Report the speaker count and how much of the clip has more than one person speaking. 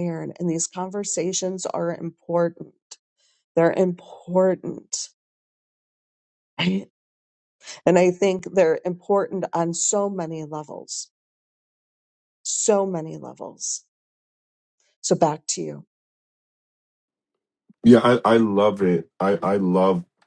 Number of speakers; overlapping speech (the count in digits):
2, no overlap